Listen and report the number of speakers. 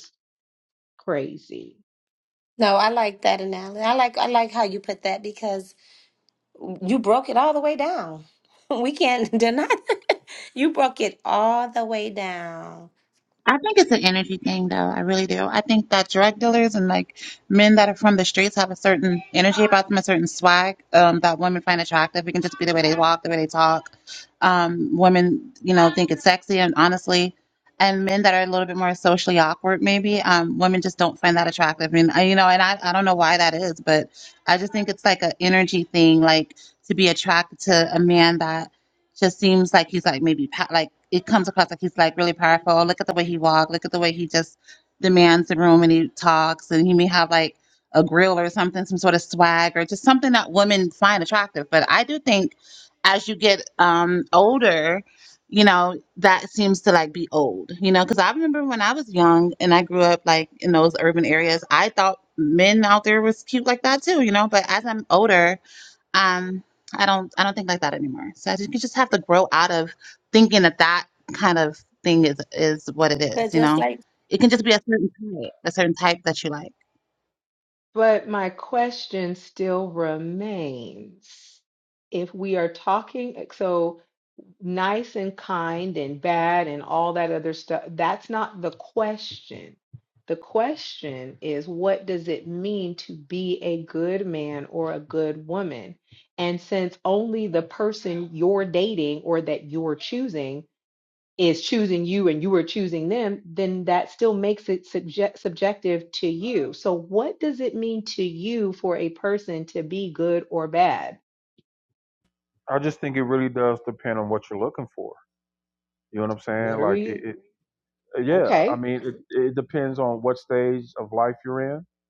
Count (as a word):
four